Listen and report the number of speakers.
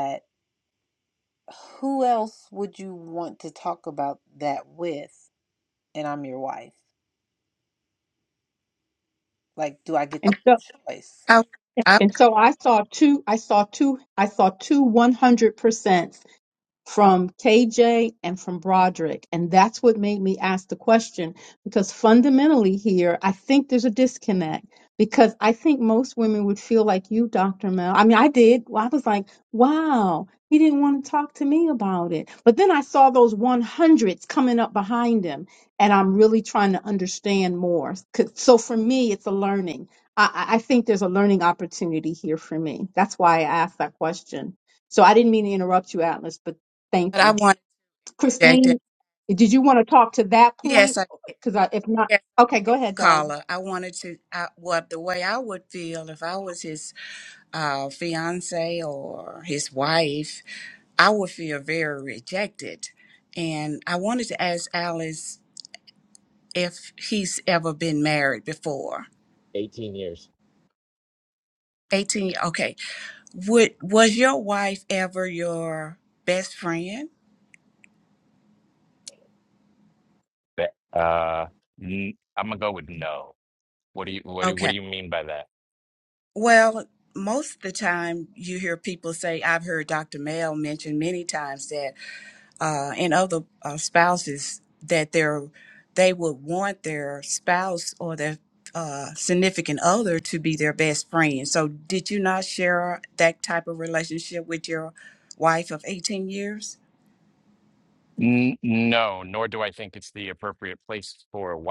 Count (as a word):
four